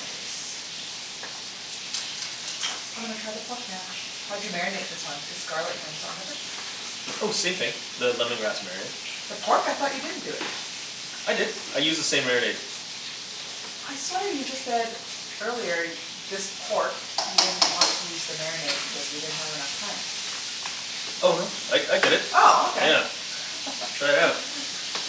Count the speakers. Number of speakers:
2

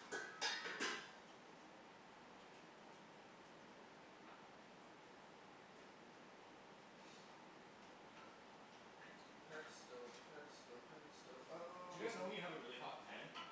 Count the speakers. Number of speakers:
2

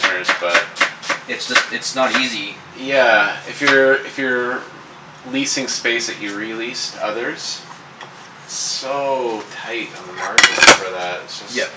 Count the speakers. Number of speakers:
2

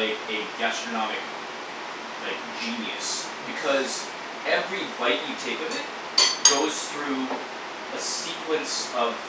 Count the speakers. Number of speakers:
1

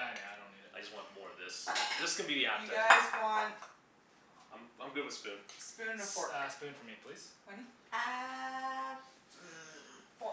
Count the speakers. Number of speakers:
4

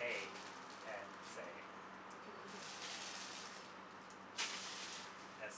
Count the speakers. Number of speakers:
1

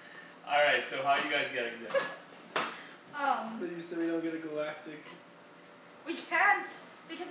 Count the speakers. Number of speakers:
3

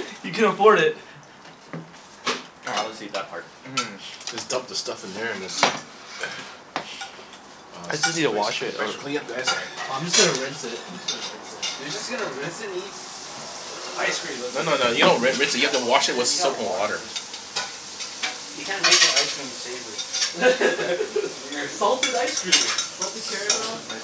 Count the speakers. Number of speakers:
4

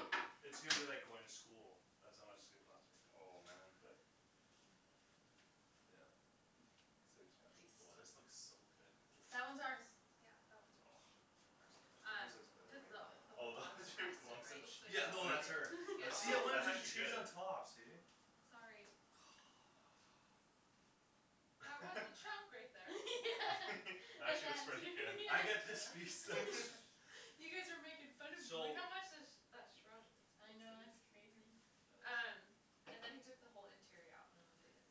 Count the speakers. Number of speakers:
4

